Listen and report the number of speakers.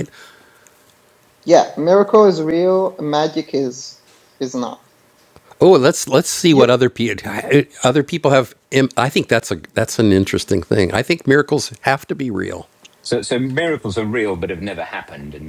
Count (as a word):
three